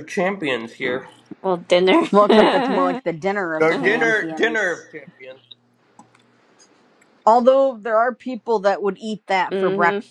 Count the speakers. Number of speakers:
three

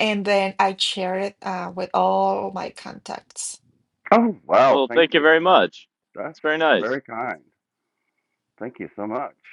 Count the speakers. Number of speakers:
three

